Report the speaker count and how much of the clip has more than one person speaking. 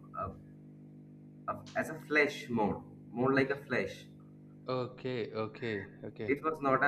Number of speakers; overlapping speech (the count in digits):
2, about 1%